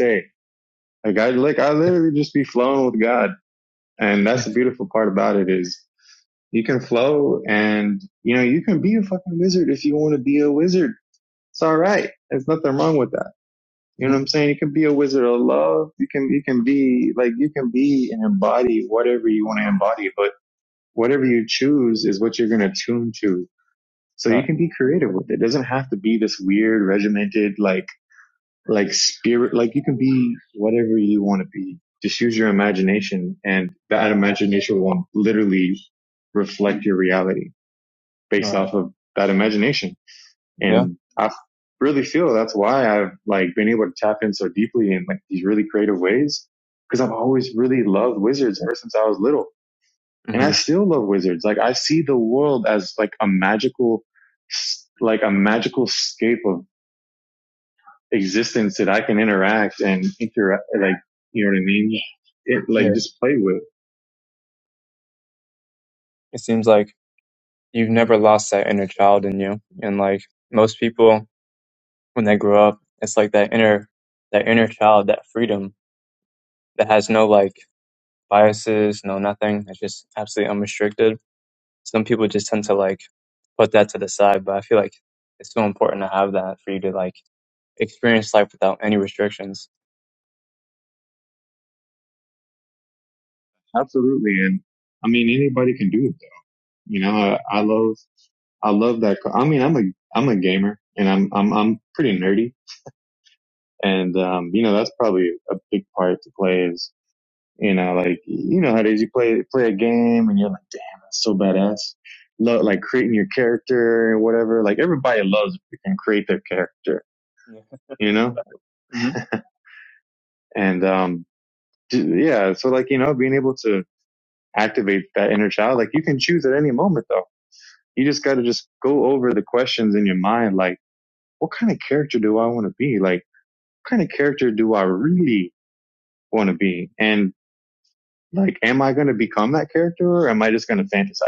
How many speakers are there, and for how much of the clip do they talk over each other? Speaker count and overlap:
two, about 1%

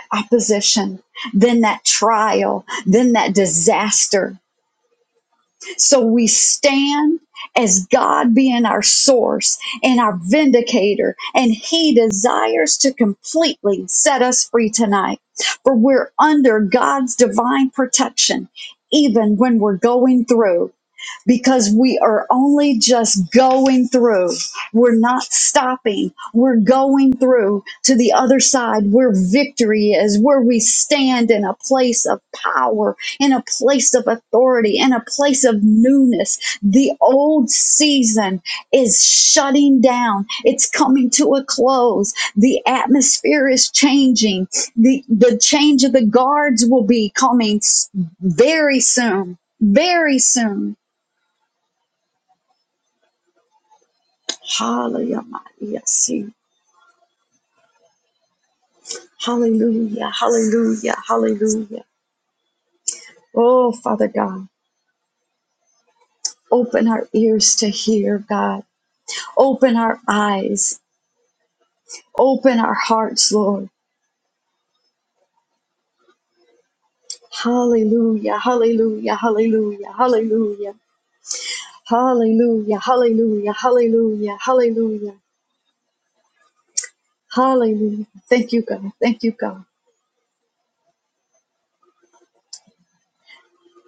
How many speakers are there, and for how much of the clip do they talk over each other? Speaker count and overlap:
one, no overlap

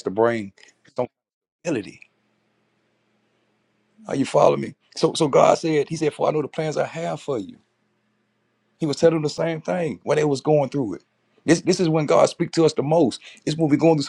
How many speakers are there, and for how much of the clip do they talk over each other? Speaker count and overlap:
one, no overlap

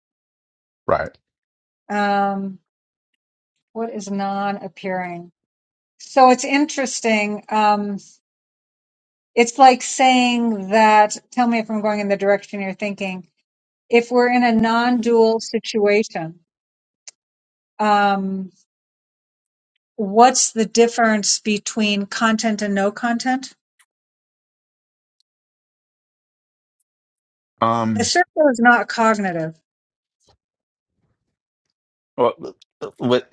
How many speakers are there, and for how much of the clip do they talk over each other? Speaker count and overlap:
two, under 1%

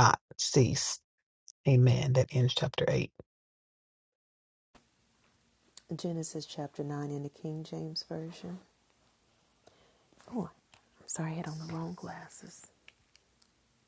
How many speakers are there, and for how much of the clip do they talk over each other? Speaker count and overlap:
two, no overlap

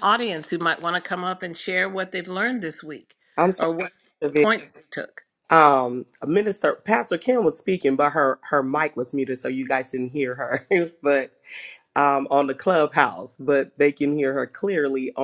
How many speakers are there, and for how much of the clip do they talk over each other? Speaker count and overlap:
two, about 1%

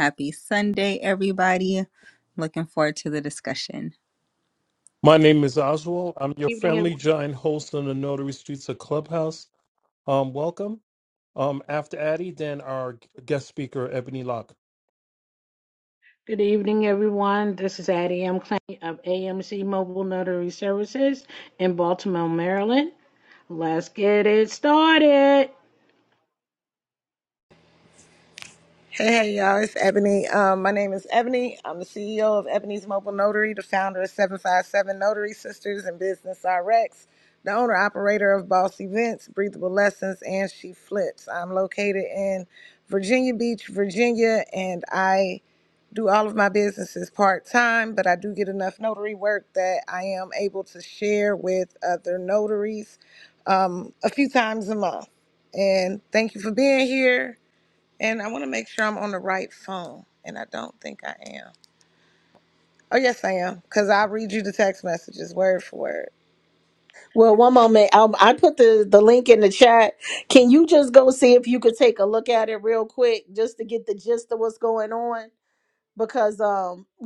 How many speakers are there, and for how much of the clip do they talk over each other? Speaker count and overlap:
five, about 1%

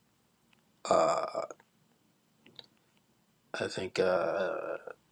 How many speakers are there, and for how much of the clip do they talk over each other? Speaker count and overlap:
one, no overlap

